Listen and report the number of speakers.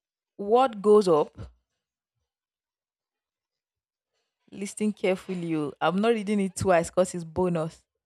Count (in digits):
1